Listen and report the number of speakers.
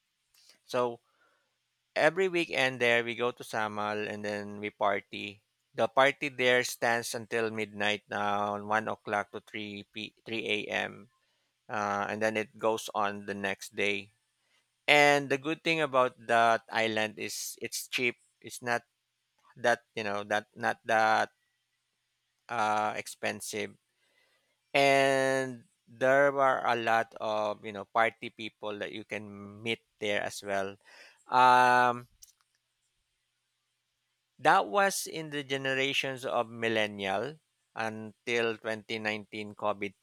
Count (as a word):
one